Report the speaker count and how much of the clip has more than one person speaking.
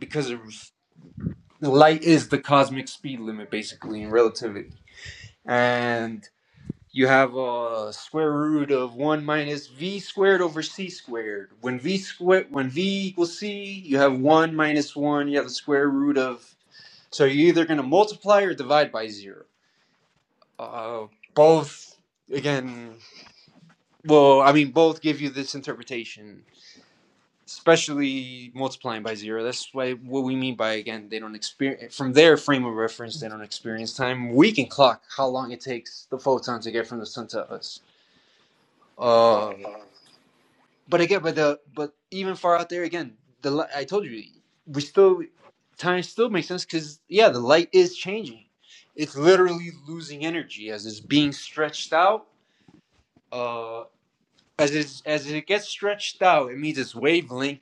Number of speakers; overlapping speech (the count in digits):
1, no overlap